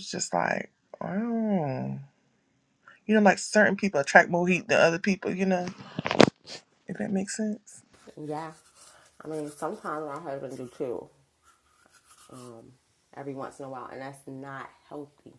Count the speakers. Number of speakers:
2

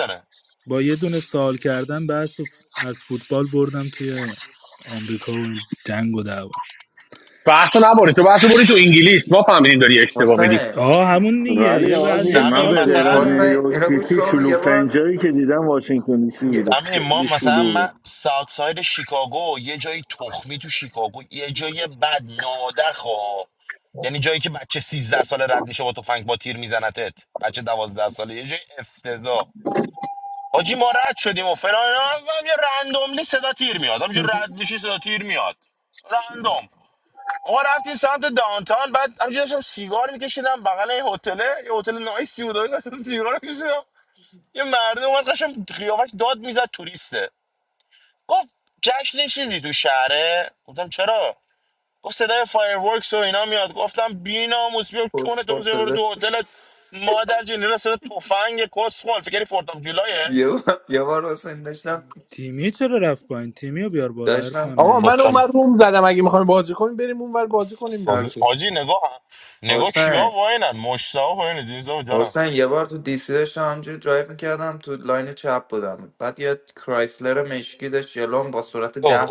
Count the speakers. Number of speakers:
6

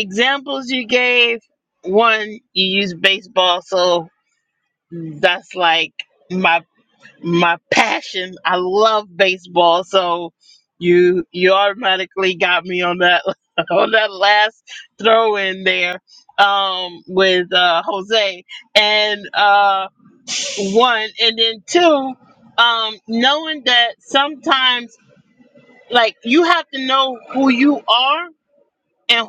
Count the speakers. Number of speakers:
1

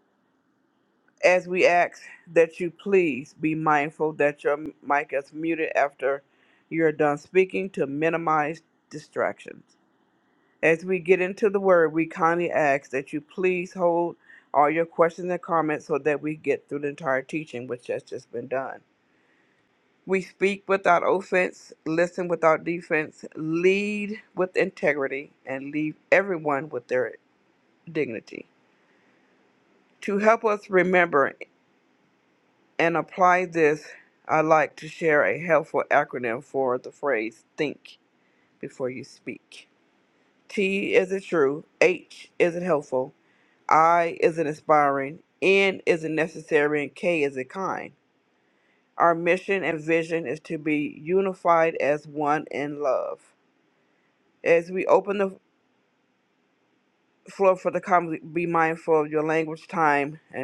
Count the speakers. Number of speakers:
1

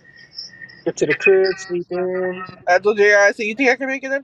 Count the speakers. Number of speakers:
2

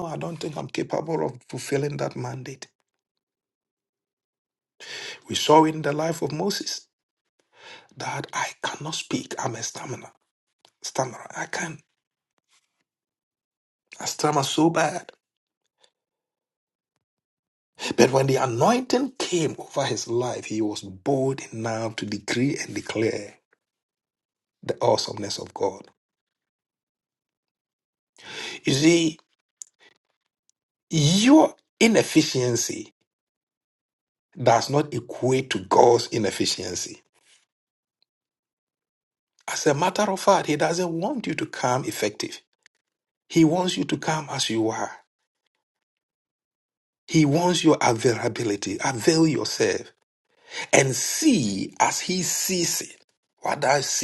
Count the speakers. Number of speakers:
1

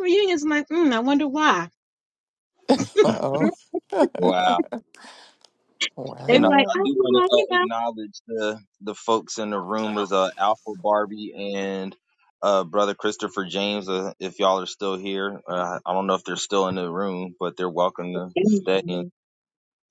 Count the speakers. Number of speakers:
3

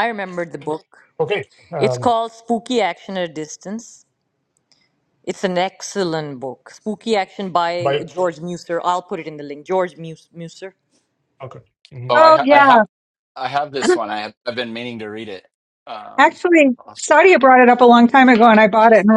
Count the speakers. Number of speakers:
4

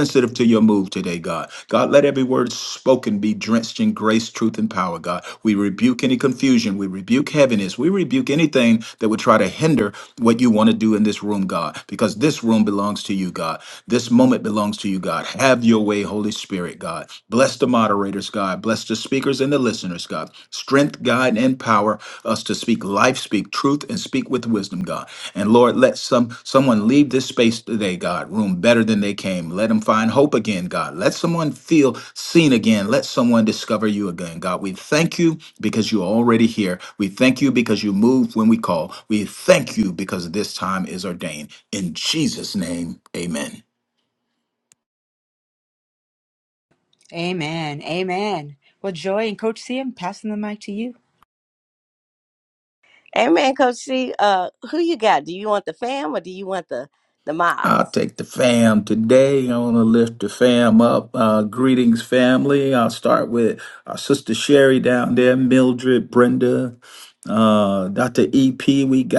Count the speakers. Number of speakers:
3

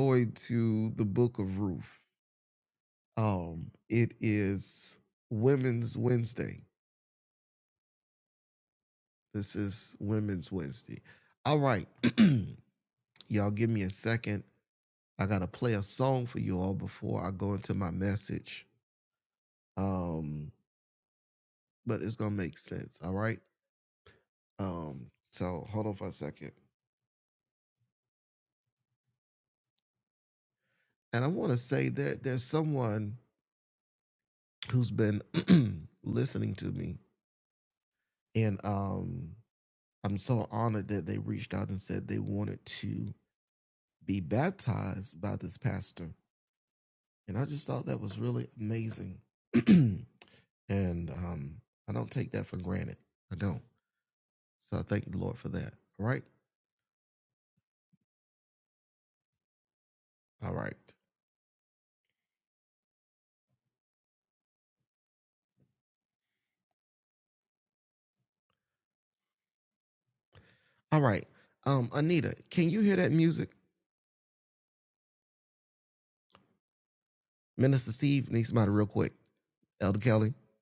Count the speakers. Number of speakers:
1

